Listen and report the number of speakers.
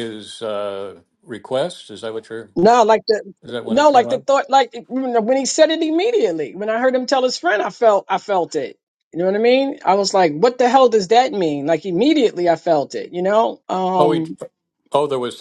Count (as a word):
two